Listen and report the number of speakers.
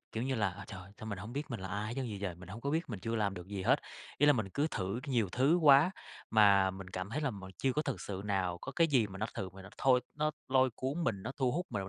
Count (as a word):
one